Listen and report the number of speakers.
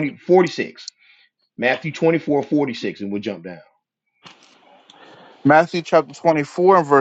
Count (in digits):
2